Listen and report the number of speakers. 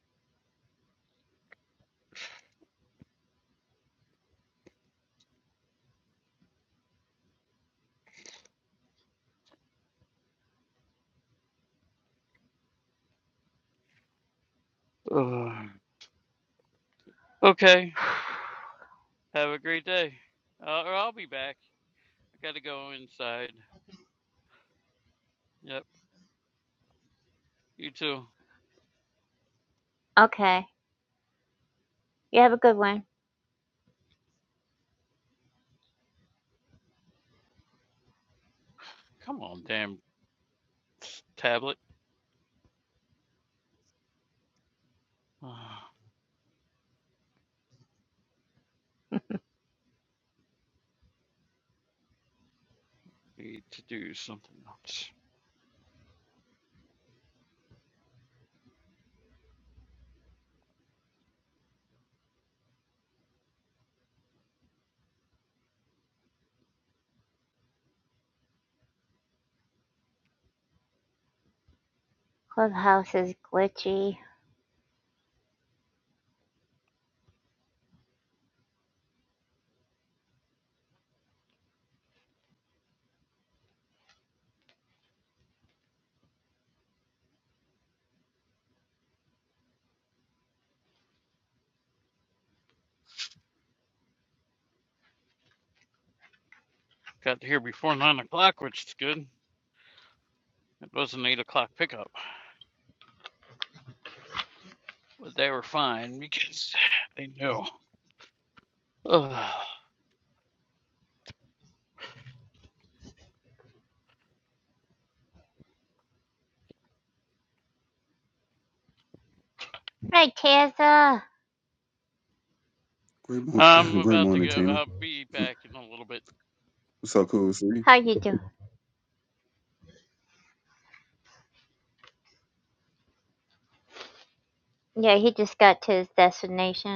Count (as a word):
three